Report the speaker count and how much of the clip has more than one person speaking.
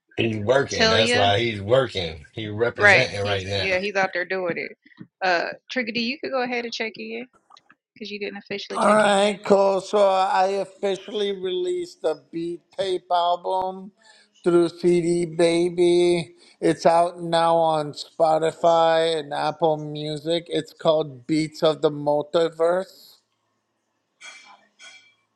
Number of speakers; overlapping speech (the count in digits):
3, about 9%